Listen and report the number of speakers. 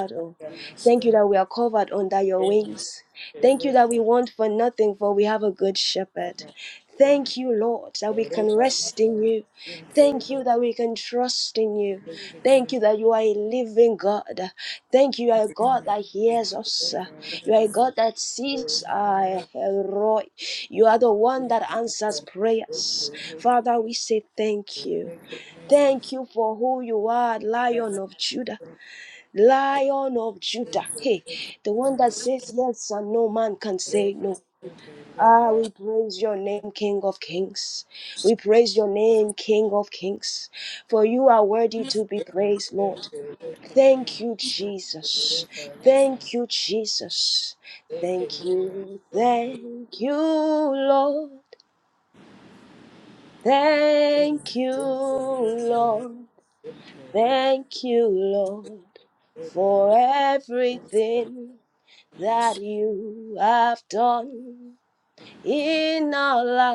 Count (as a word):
two